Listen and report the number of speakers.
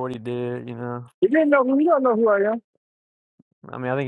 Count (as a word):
two